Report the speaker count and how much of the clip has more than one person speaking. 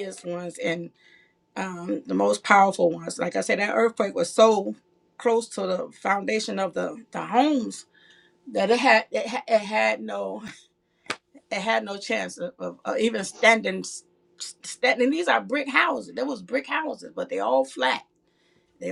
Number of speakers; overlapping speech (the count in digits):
1, no overlap